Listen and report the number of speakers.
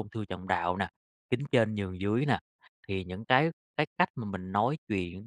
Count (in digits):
1